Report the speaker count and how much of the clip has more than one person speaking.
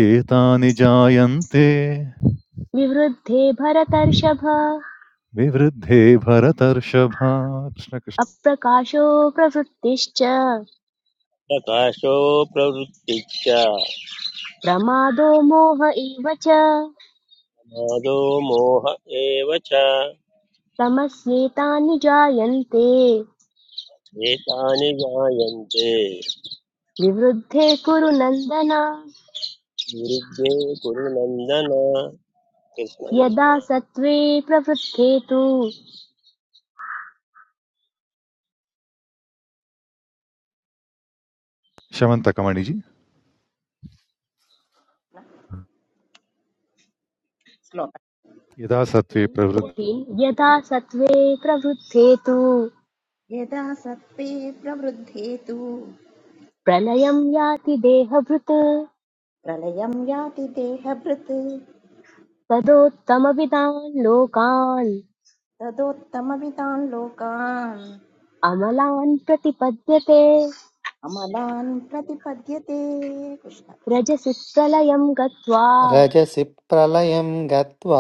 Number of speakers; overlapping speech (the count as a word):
five, about 1%